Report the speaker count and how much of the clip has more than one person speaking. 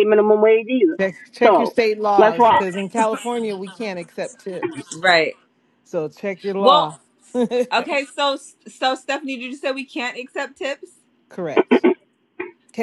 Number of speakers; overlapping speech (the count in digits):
3, about 9%